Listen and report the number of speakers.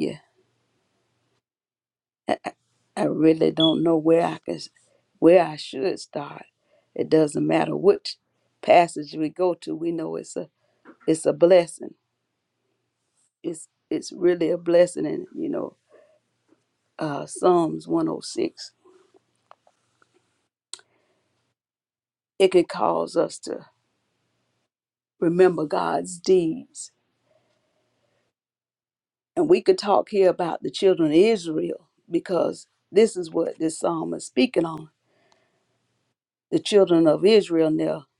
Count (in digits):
1